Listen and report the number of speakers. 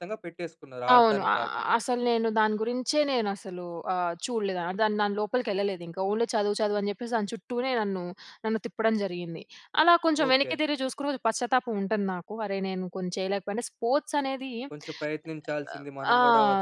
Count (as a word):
two